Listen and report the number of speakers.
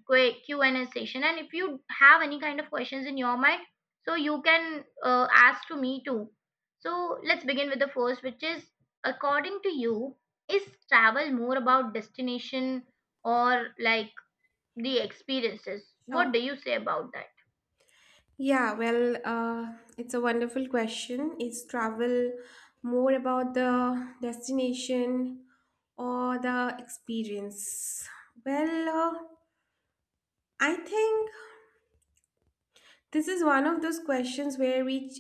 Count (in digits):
2